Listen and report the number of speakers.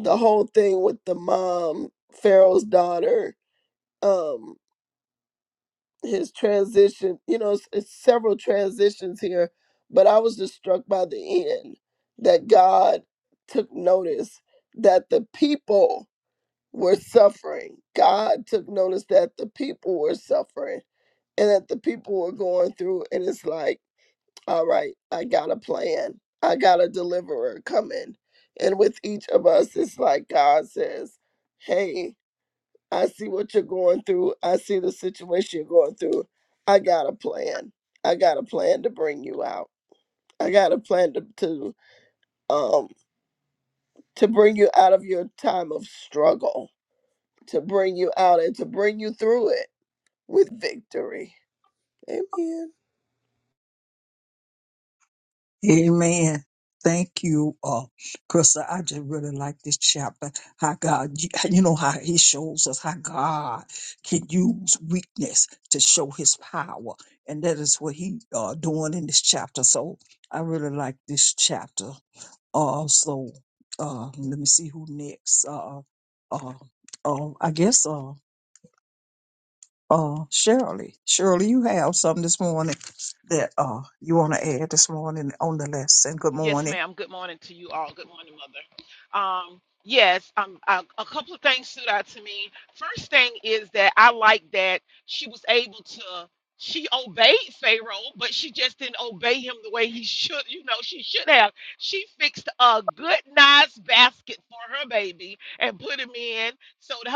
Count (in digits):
3